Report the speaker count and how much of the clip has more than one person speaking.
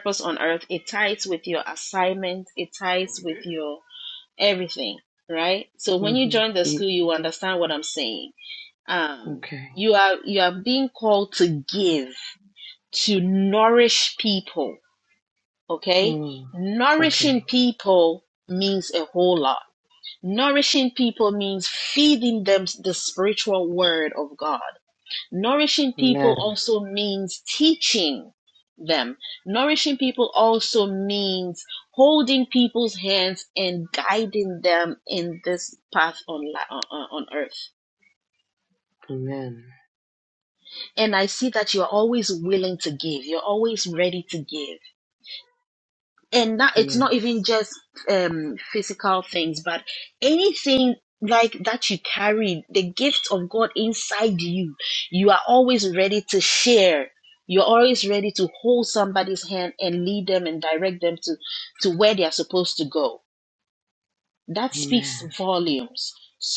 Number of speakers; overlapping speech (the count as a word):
two, about 4%